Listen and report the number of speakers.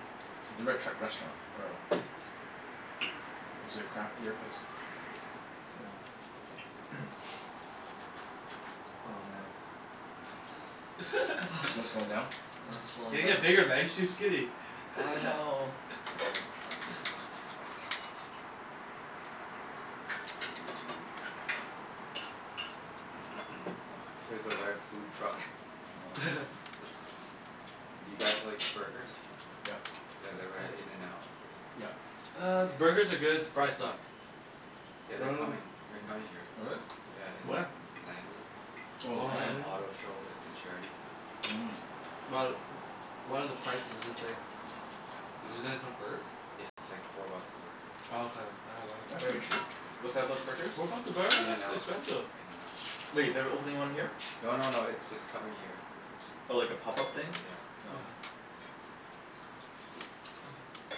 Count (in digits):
4